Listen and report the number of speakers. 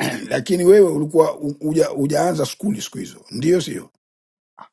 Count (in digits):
1